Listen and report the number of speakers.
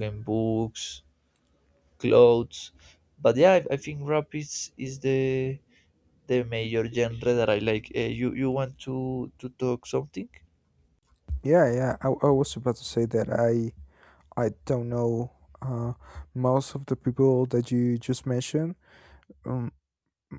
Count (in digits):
2